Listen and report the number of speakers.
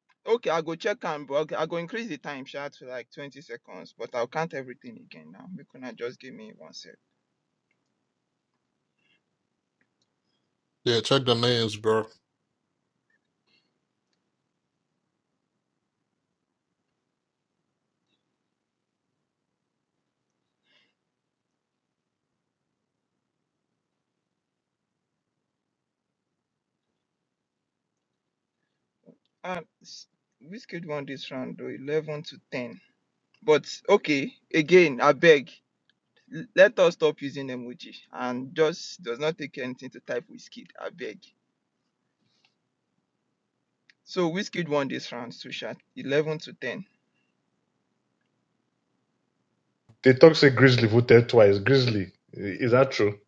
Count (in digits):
3